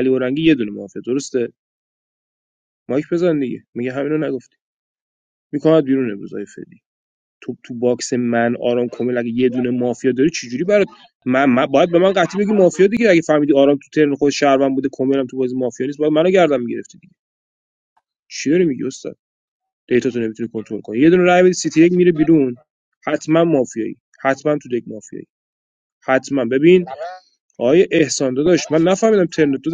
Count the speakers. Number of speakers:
one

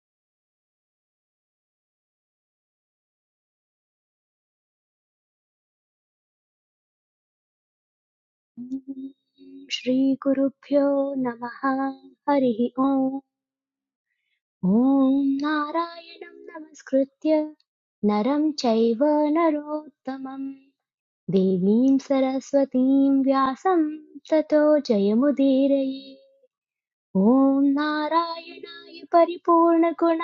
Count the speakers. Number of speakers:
one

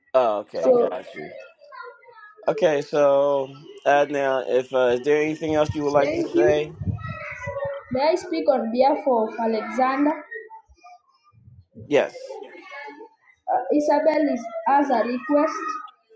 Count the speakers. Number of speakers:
two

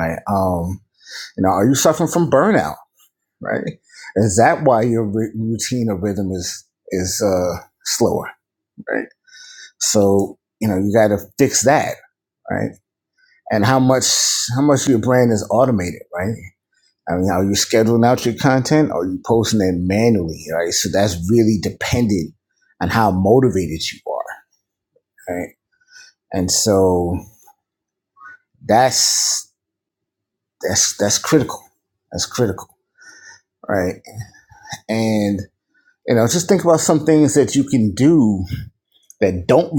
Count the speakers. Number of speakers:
one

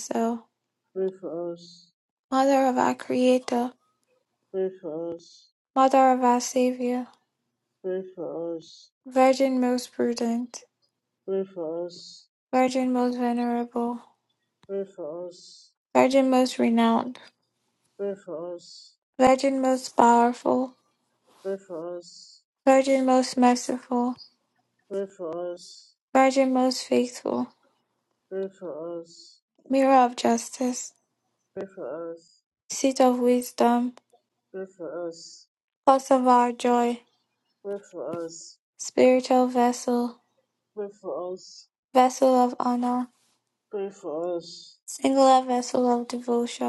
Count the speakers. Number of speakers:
two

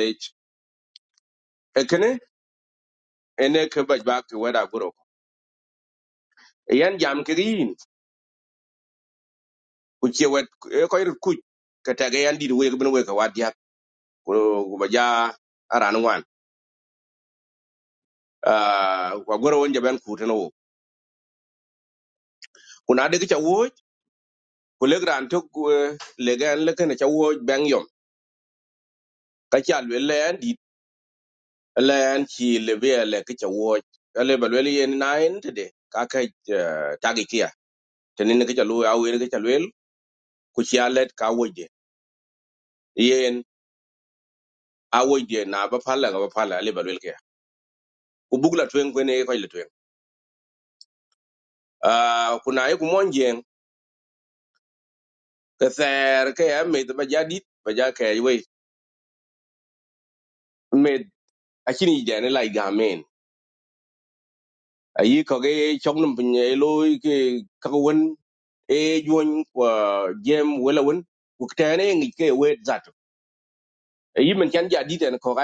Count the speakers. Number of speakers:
one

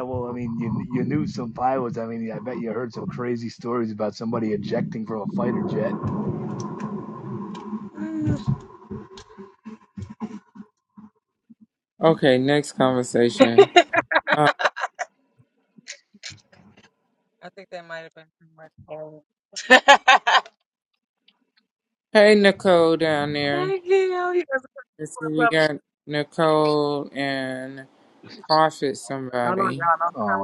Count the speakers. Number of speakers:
three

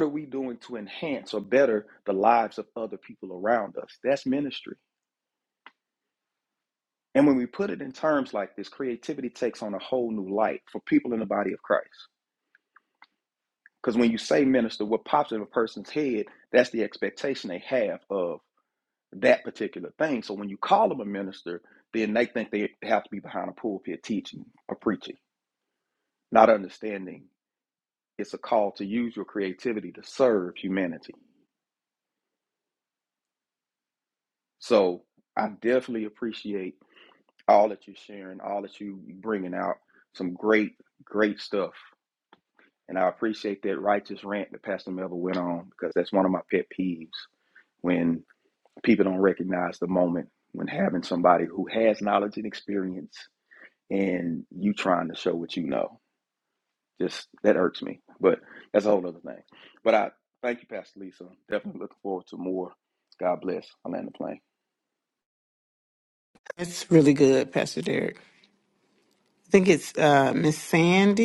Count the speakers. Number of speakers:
two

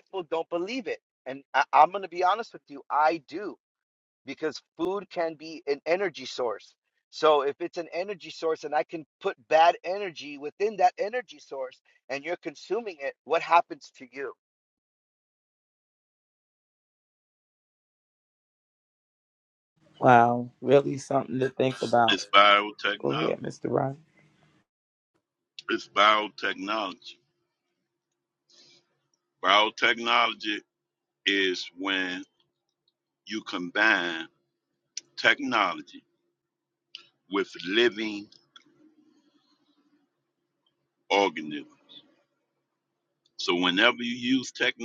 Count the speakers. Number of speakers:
three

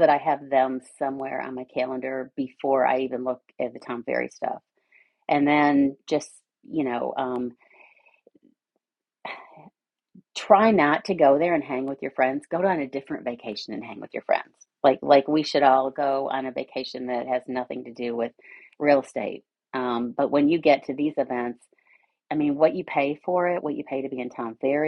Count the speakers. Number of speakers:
one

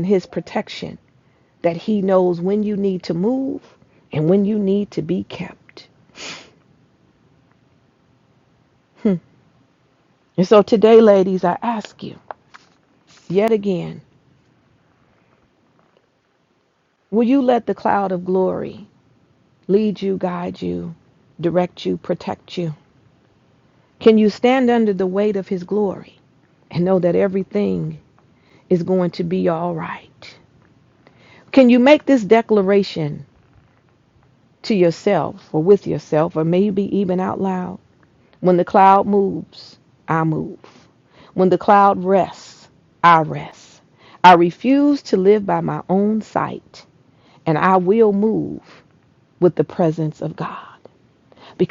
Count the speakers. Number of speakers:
one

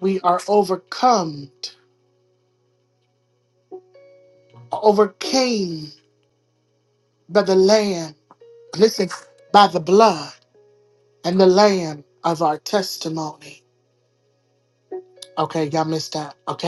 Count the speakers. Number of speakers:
one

